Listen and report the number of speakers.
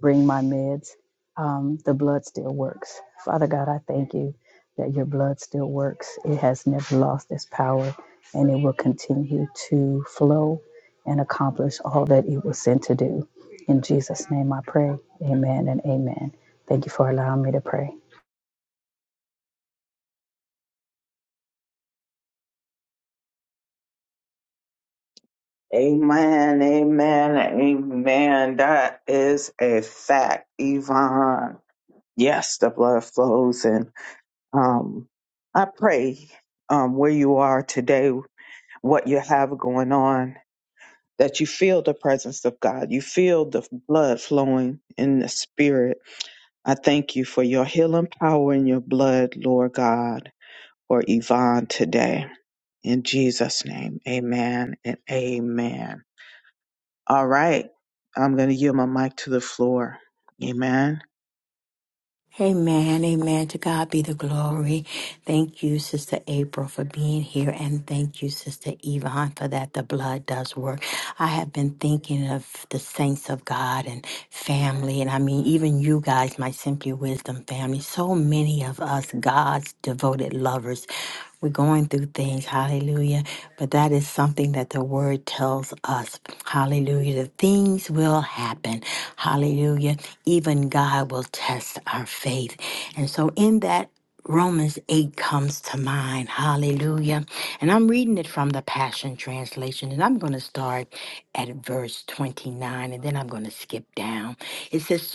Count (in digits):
3